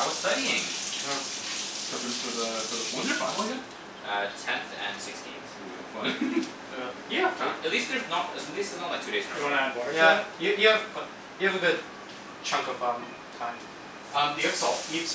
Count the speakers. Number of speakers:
four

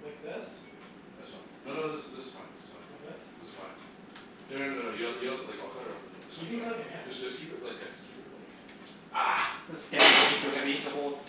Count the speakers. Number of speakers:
three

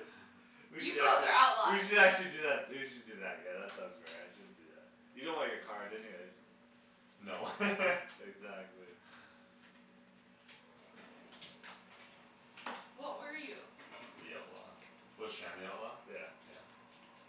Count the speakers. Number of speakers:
three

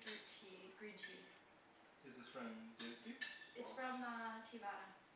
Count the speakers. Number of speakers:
two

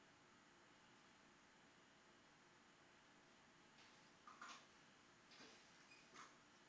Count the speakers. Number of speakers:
zero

